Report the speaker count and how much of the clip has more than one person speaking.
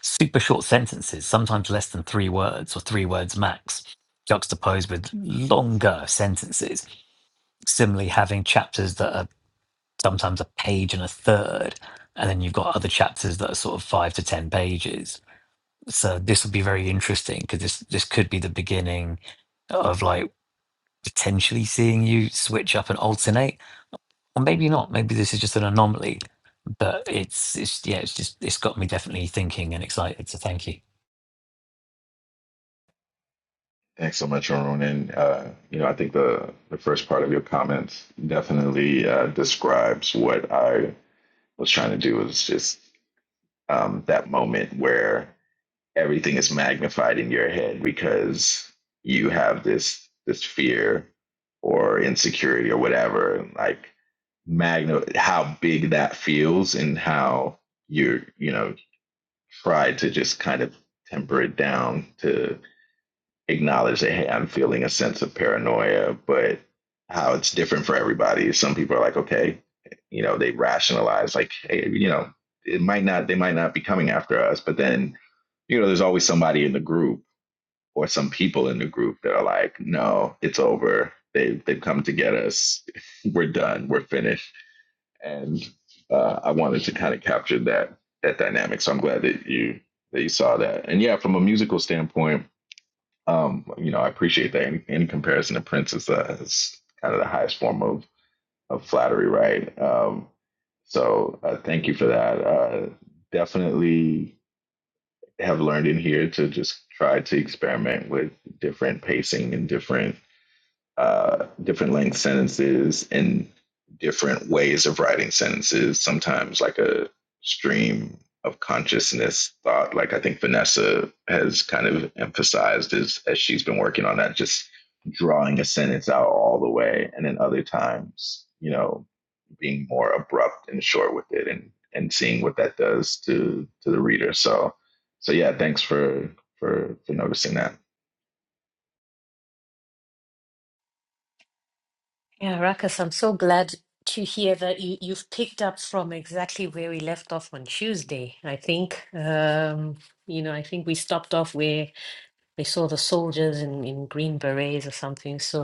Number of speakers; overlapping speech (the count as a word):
three, no overlap